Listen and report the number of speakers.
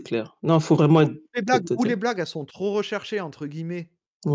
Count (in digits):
2